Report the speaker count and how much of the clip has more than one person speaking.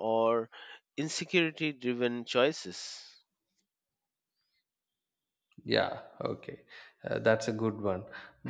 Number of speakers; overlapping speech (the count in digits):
2, no overlap